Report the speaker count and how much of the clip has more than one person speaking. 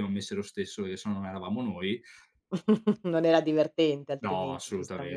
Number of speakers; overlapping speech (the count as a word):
two, about 19%